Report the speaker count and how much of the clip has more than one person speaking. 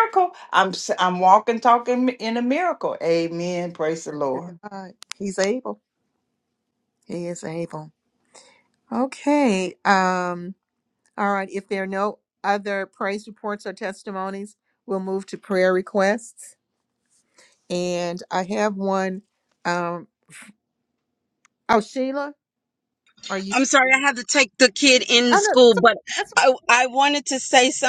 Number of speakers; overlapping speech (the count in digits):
3, about 2%